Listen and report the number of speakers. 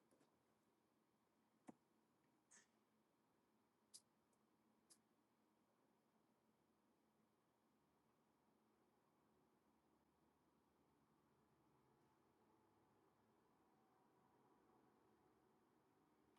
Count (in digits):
0